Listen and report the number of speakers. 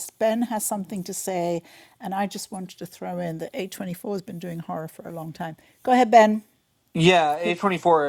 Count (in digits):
2